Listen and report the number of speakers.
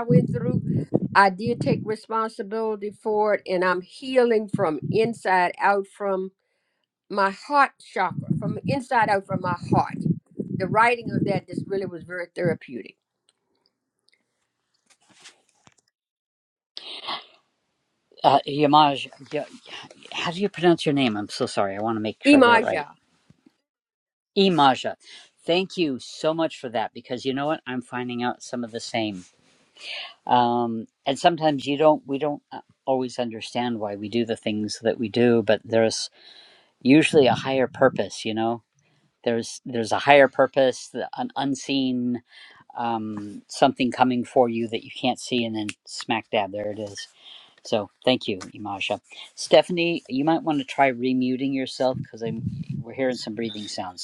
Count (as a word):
two